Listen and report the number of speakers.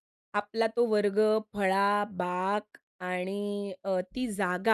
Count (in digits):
1